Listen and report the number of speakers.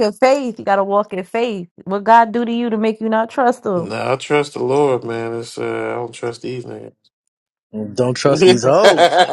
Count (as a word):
three